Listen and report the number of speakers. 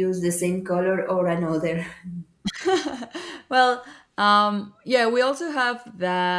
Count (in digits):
2